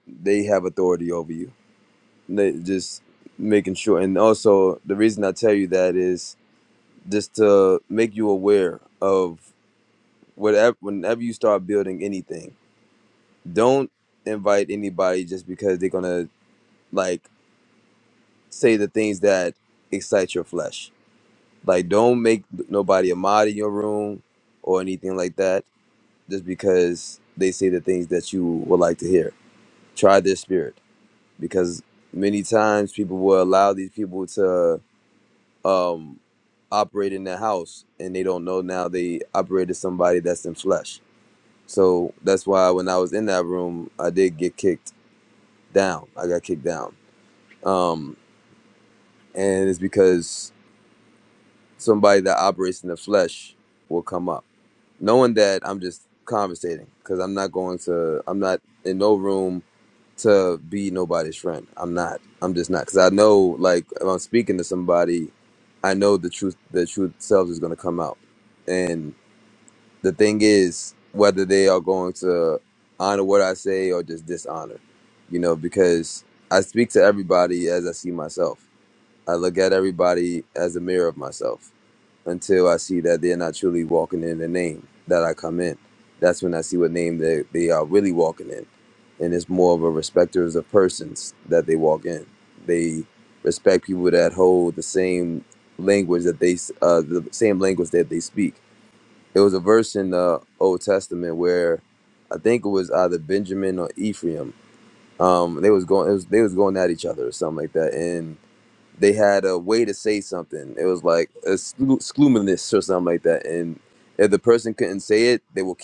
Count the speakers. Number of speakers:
1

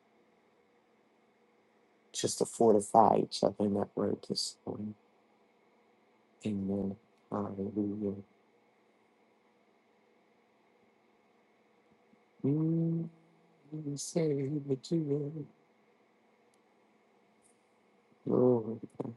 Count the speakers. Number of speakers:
1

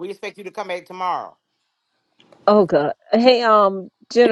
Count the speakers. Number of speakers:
2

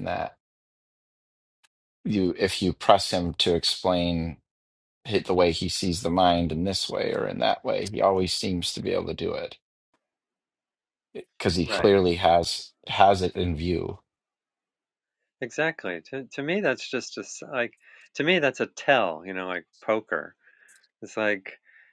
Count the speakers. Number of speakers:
2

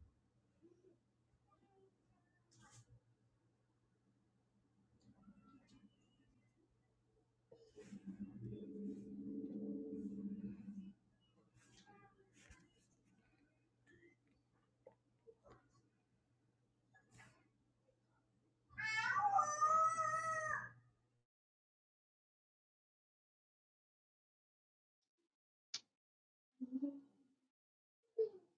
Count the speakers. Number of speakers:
0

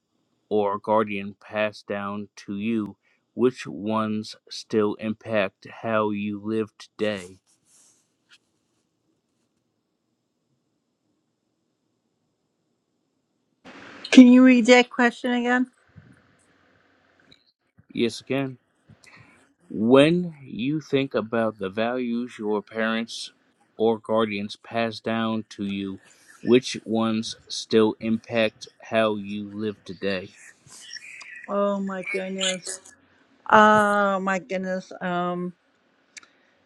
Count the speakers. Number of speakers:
2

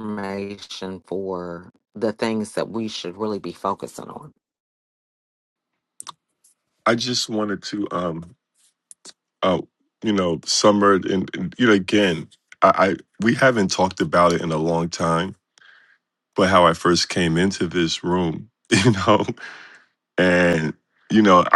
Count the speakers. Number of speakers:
2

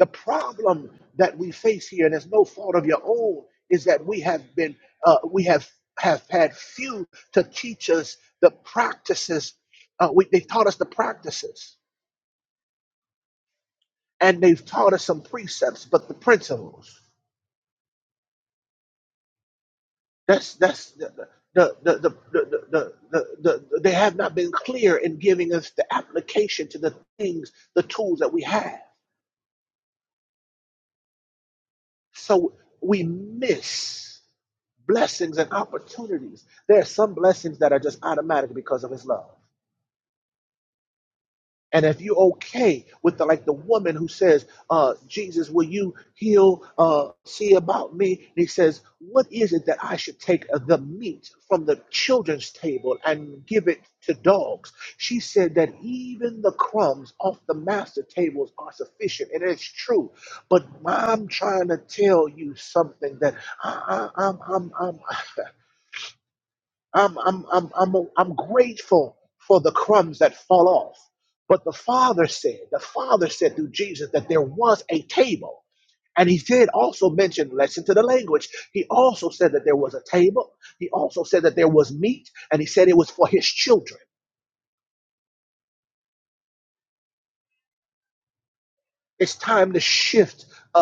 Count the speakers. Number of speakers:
1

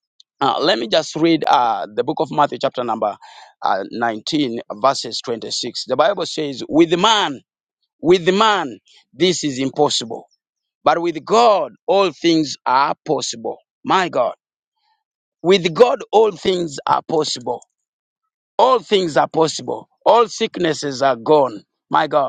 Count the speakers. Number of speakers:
1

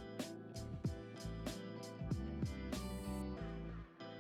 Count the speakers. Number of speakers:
0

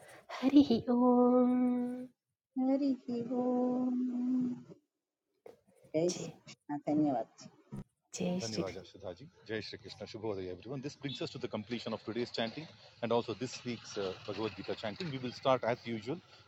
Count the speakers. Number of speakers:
3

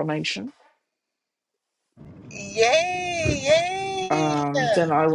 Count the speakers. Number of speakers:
2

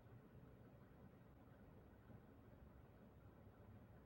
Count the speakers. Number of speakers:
0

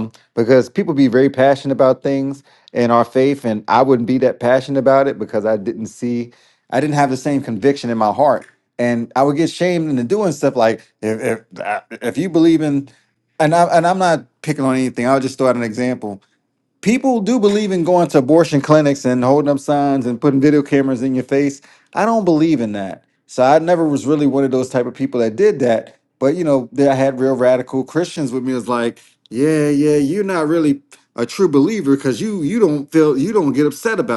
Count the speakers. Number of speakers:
1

